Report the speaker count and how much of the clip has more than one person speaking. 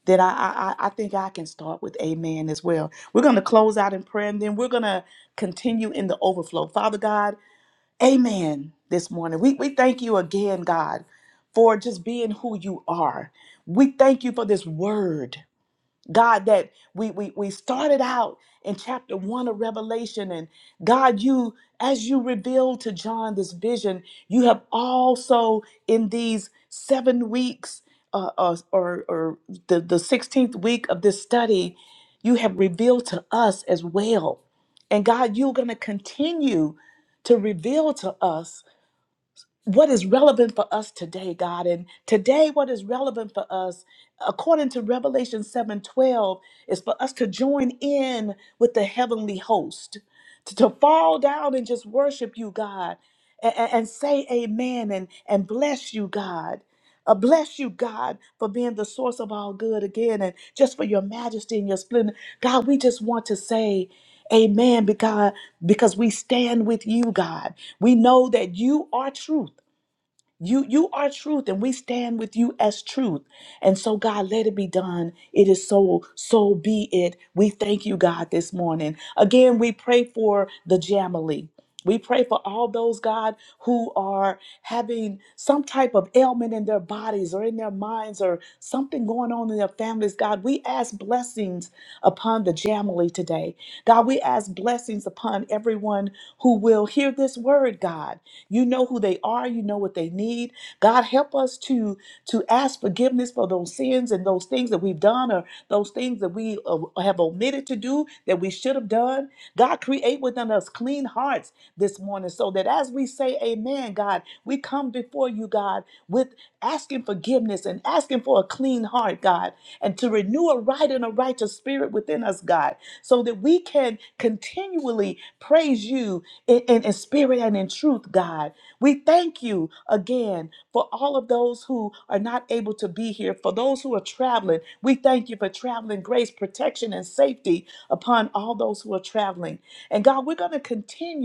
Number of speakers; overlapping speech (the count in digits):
1, no overlap